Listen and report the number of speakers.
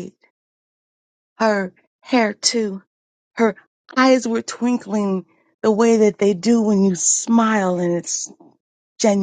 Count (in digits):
1